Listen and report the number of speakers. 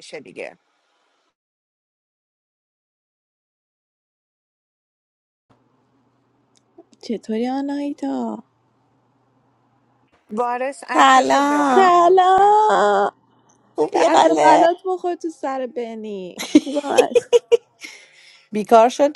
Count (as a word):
three